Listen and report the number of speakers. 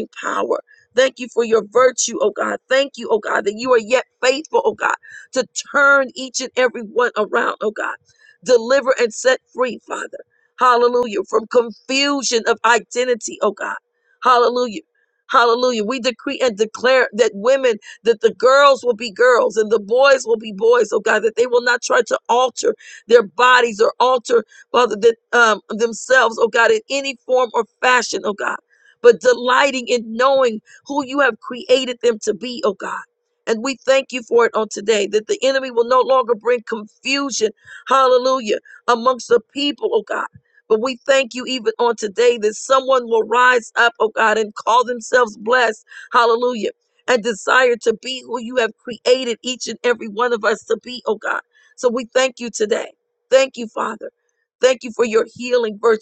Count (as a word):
one